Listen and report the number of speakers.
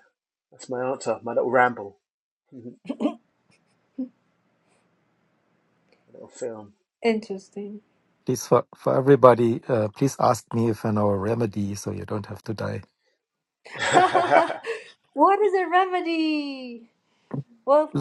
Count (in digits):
3